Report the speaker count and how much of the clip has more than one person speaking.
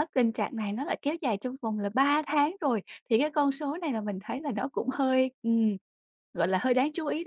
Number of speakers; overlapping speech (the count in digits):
1, no overlap